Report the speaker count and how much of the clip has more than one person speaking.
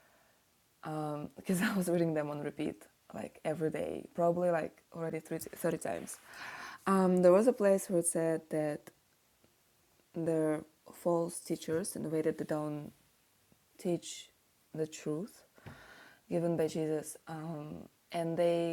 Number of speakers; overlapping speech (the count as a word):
one, no overlap